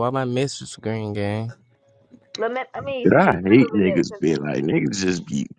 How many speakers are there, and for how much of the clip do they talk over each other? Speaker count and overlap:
3, about 21%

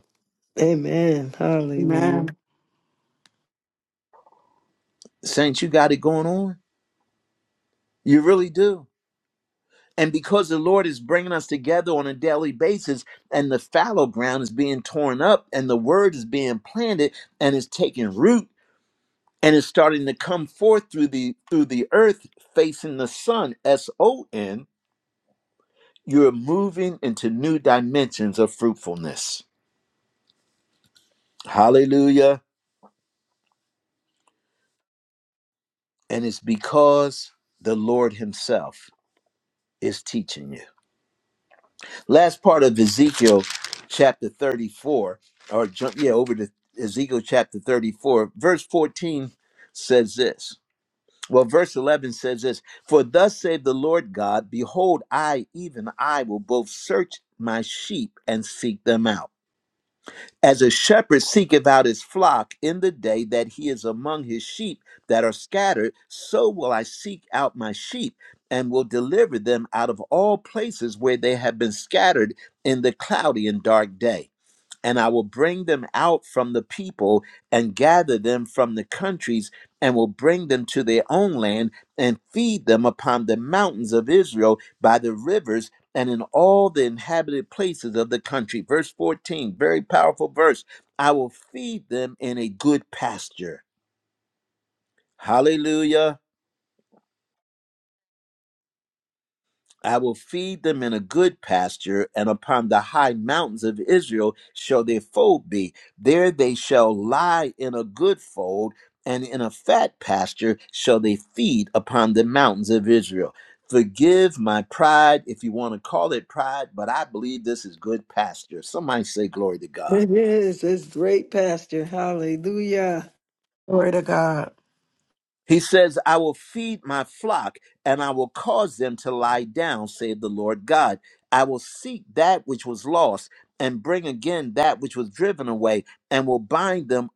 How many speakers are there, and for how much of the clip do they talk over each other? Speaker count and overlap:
3, under 1%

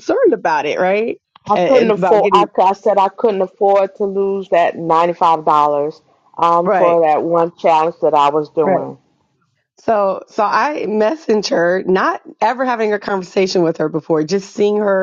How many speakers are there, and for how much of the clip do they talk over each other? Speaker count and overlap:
2, about 10%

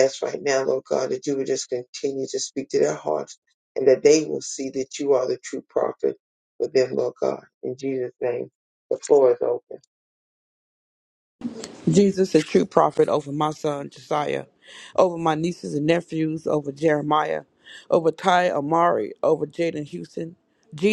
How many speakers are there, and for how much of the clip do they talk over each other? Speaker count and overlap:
2, no overlap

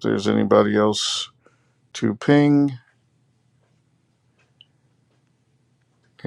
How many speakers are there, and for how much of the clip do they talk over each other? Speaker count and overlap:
1, no overlap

